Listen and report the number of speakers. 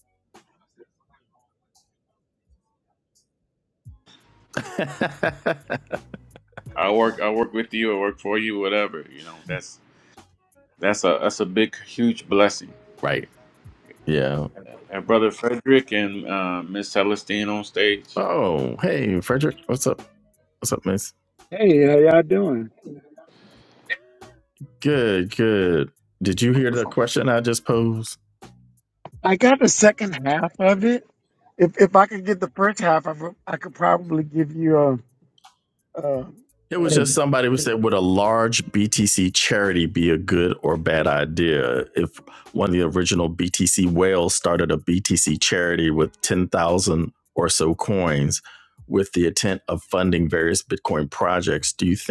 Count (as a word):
three